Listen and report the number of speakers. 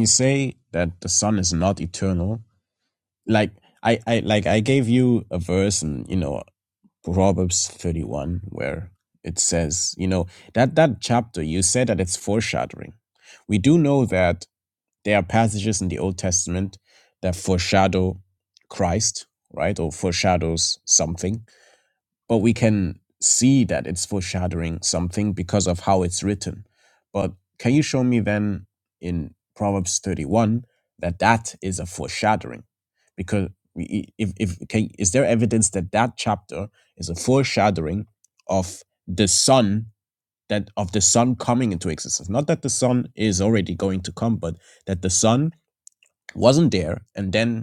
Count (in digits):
1